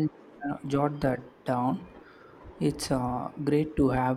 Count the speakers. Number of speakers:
one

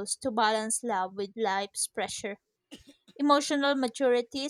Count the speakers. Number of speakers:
one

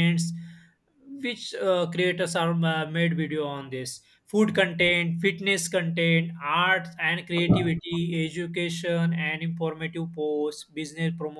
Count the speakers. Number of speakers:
one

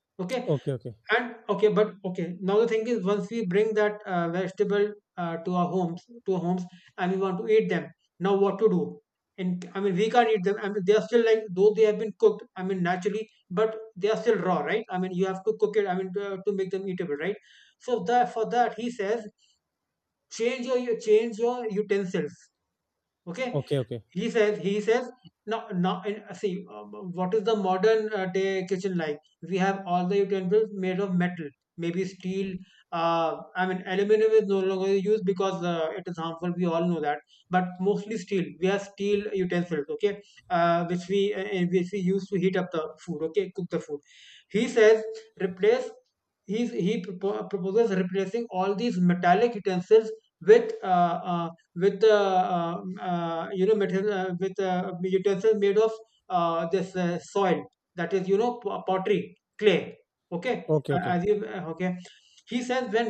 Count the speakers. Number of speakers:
two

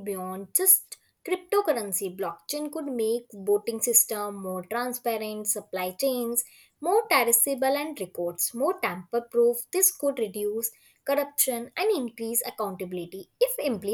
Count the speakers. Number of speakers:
one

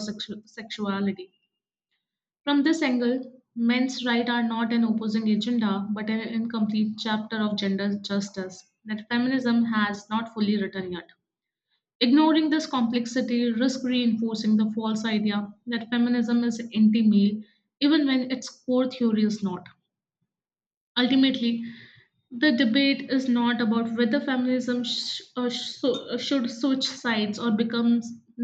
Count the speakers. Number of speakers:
one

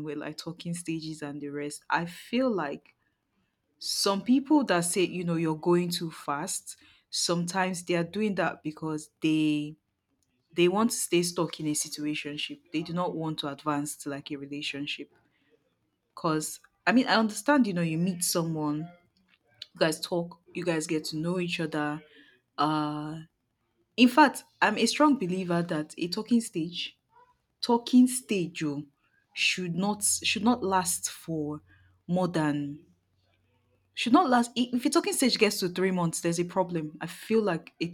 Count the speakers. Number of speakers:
one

